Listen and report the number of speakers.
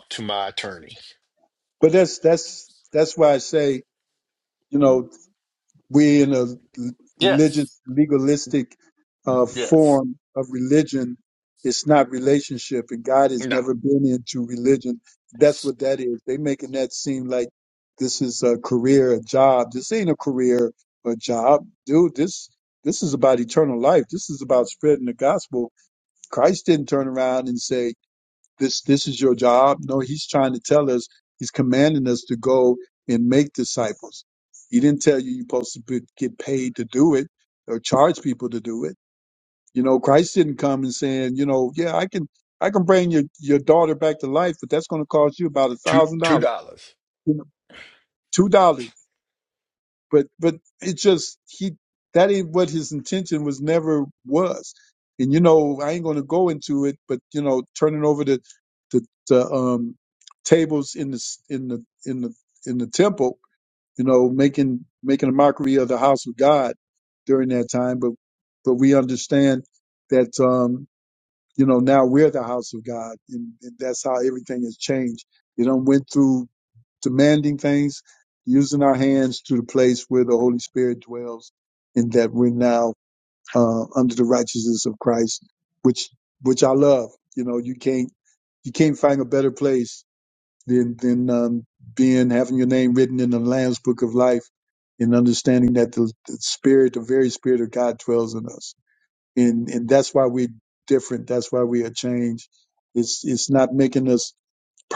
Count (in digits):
2